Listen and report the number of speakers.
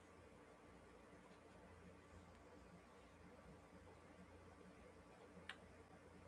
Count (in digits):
0